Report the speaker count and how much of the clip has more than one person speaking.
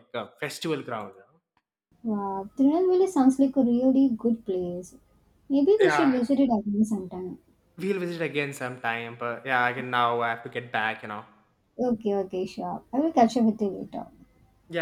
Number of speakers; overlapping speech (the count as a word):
two, about 3%